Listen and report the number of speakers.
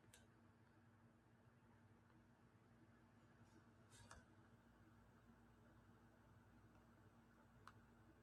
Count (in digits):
0